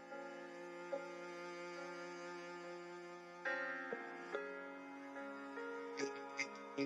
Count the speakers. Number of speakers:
0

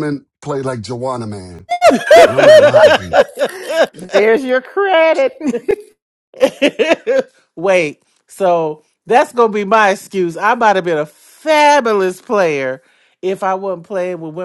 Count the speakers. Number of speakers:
3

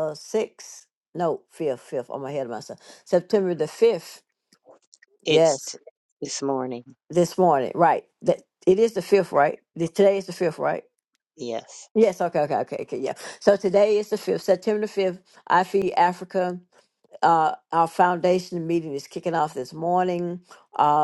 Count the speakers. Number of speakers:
2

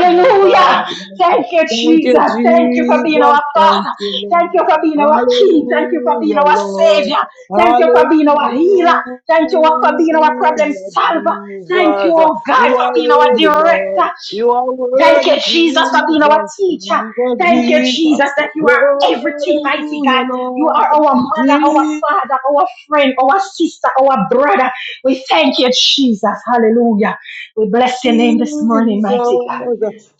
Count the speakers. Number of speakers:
2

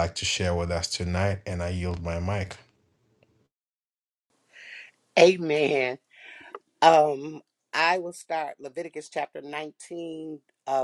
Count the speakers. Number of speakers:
2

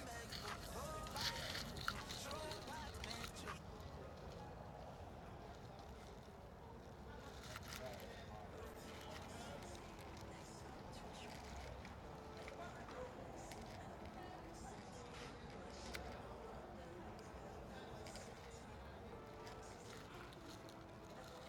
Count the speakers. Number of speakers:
0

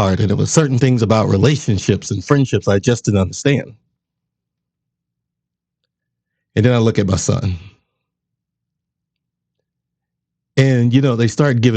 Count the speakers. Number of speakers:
1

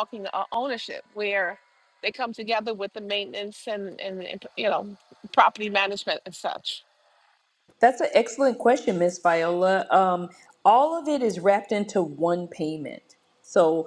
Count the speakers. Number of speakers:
2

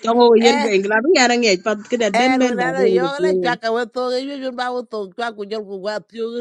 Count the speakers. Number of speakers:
2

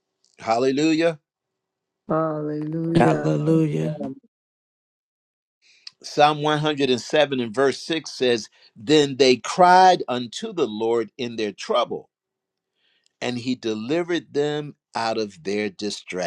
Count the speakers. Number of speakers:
3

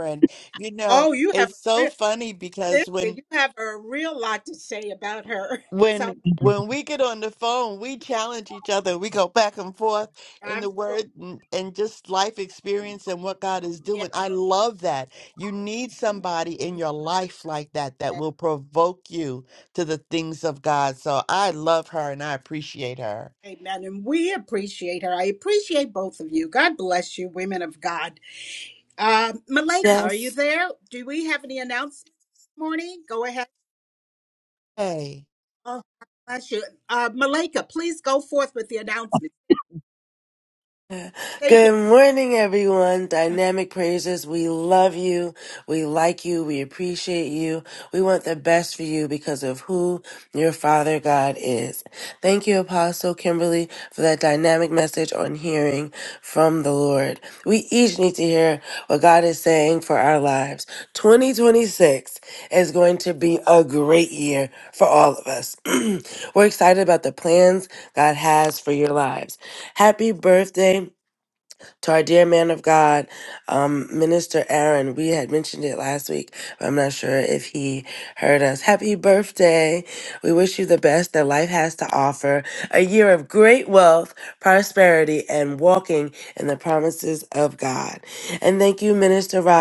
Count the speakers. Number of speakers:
3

